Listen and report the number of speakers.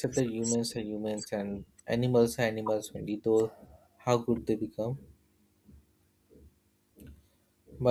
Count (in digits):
1